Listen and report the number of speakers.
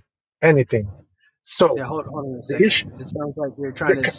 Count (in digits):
2